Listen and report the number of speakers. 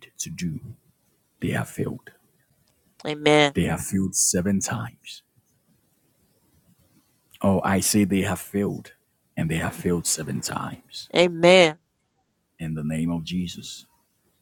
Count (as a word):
two